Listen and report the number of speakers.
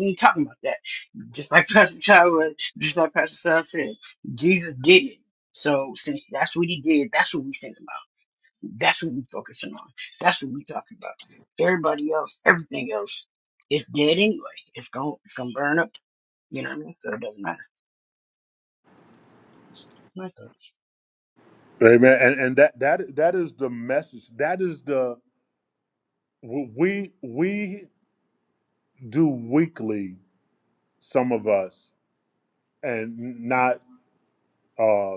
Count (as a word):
two